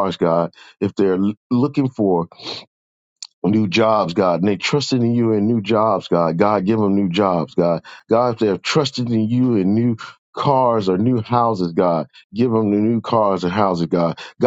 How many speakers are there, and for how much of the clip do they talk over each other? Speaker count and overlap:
1, no overlap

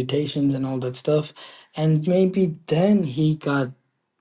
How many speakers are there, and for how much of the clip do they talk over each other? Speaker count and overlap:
1, no overlap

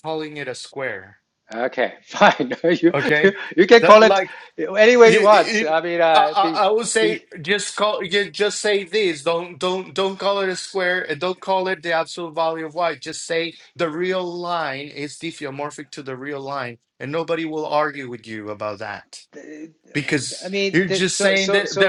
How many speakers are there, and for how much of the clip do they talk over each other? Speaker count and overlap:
2, about 17%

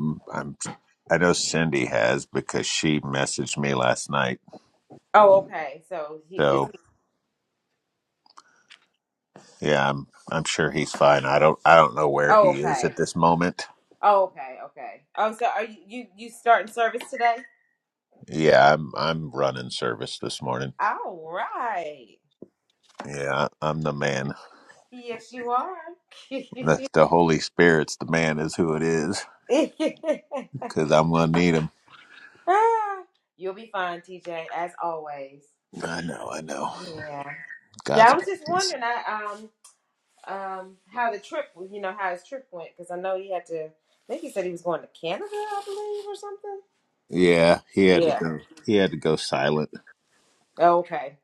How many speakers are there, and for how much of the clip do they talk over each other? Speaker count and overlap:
2, about 4%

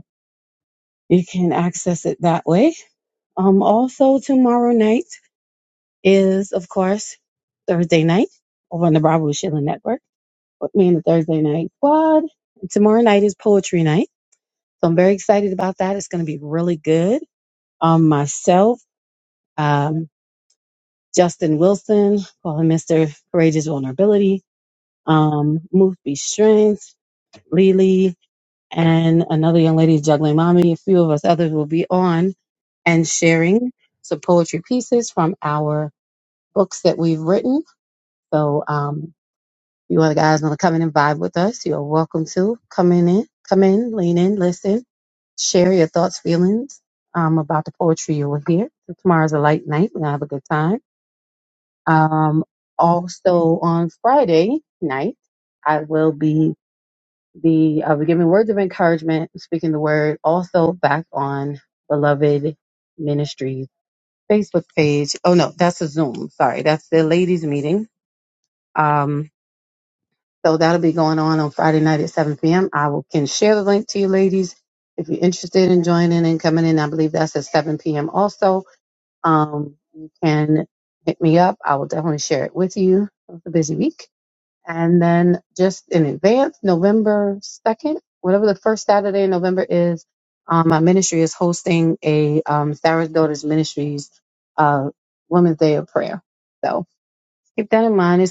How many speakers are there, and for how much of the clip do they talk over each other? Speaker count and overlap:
1, no overlap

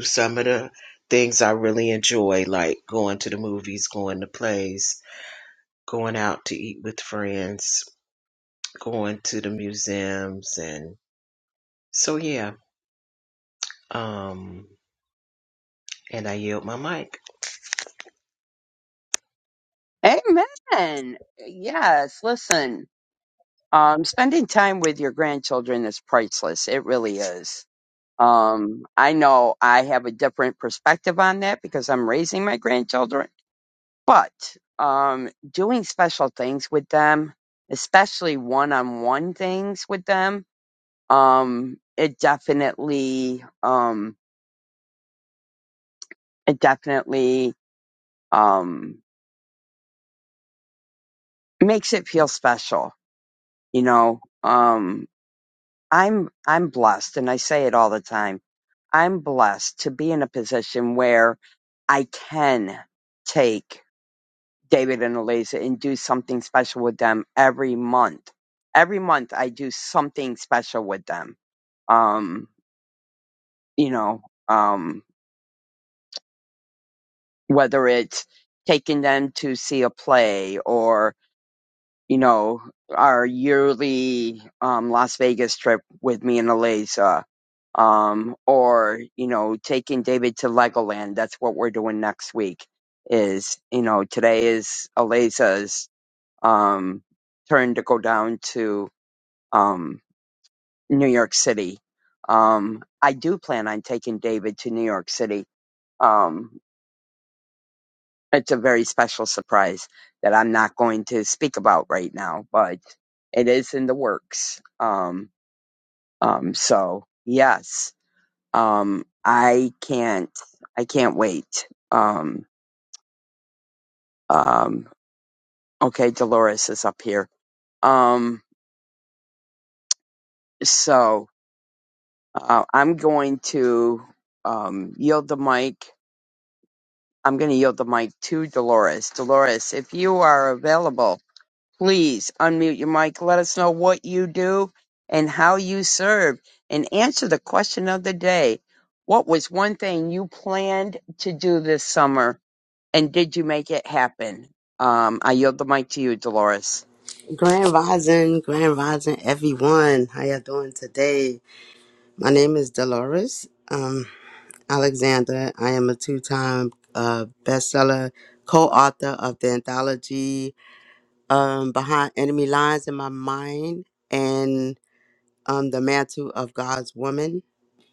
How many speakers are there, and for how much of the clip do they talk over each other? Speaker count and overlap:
3, no overlap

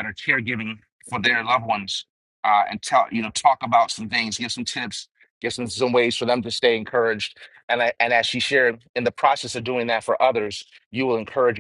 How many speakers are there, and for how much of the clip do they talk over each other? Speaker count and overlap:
1, no overlap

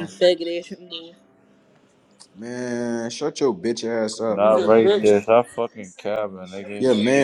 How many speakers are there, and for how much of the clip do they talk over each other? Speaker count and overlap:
3, about 14%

